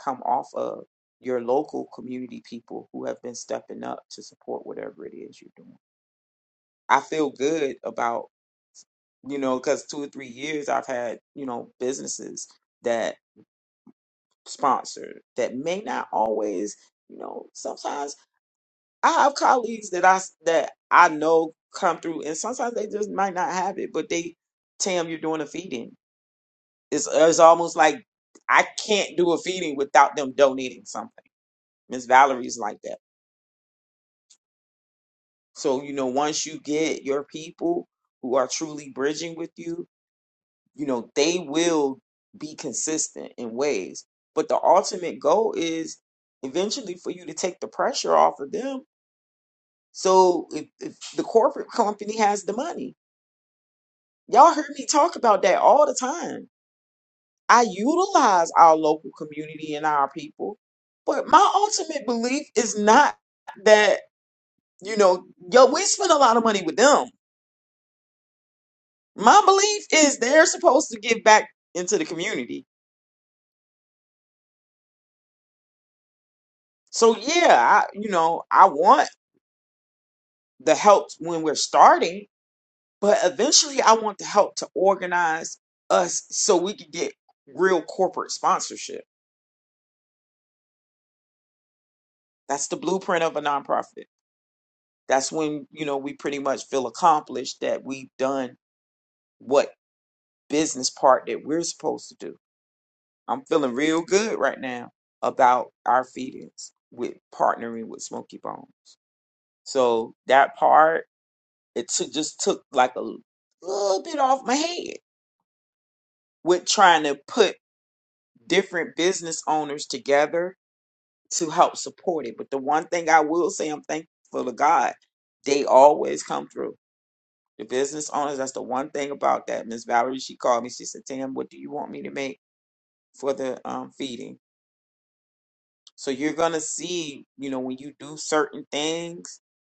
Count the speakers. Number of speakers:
1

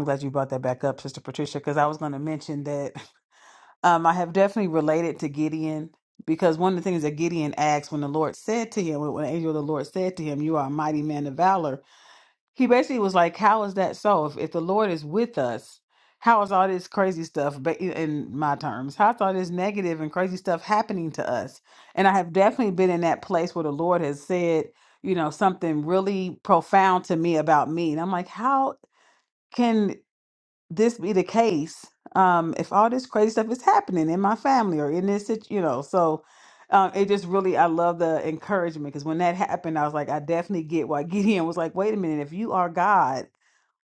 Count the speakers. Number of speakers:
1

